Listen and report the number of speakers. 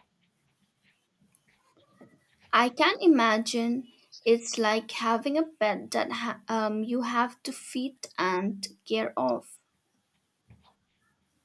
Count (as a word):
one